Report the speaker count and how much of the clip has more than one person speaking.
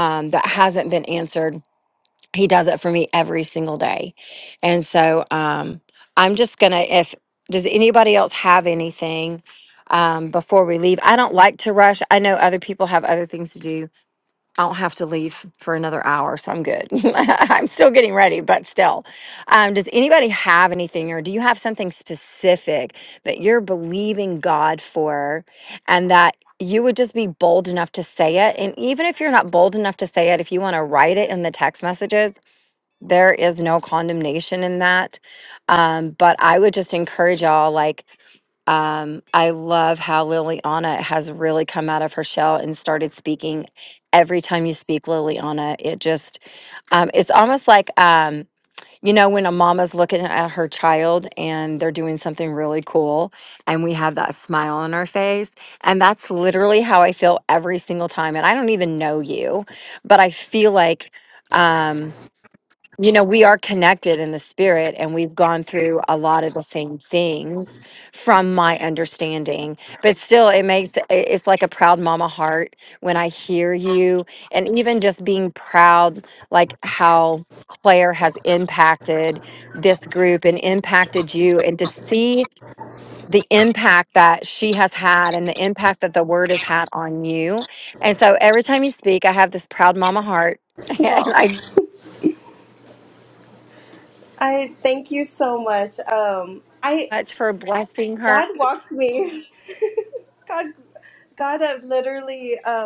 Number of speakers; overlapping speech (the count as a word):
two, about 1%